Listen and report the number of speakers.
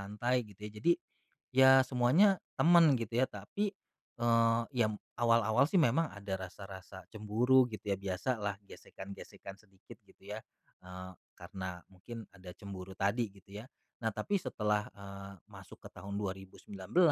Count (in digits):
1